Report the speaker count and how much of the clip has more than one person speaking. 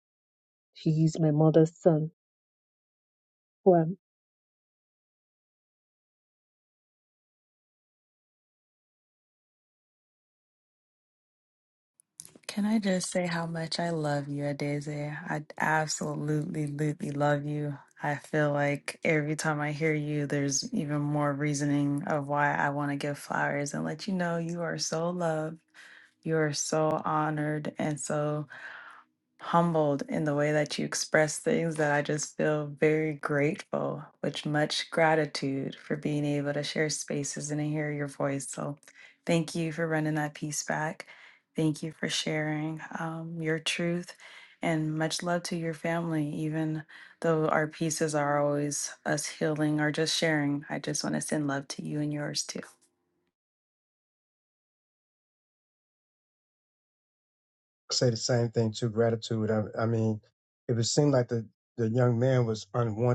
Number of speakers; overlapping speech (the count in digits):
3, no overlap